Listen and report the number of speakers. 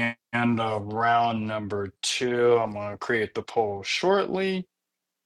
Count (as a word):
one